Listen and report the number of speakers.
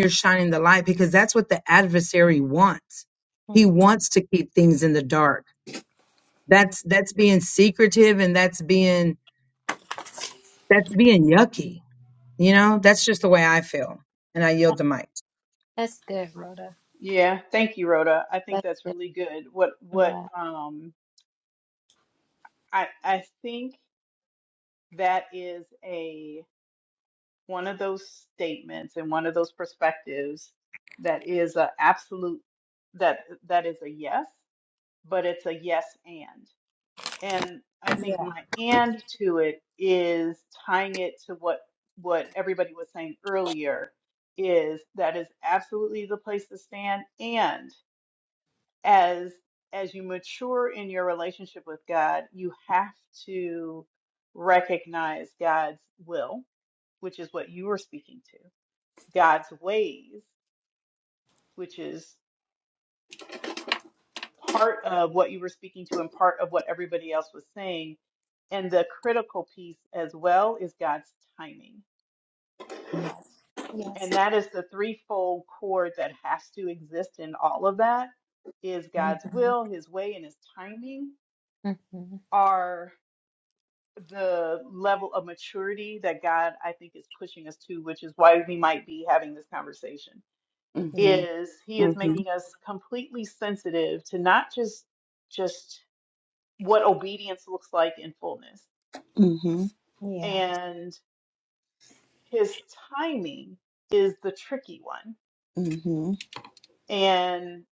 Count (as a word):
four